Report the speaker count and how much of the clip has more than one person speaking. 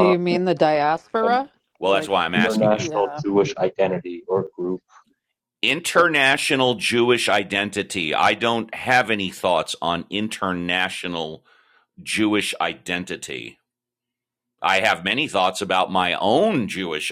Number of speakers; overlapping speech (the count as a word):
three, about 10%